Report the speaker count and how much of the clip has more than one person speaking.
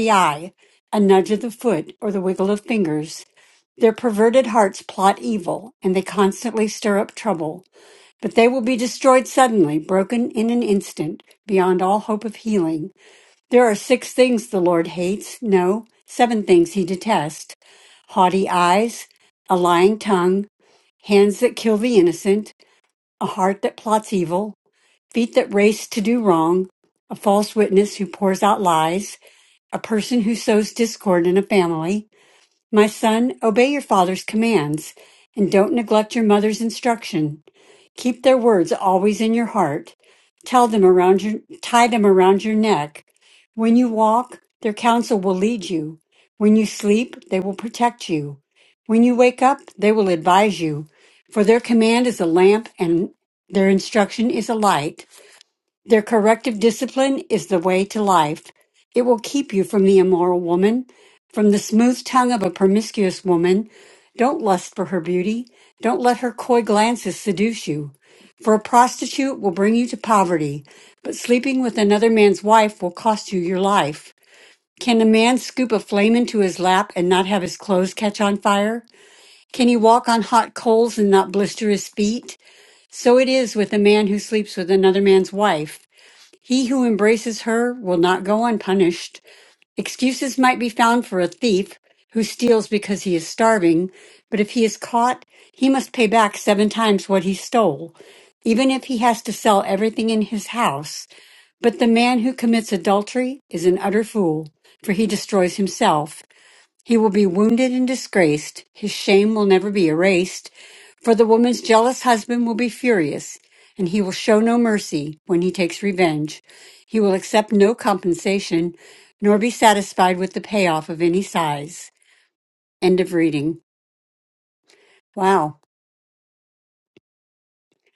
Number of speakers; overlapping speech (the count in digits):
1, no overlap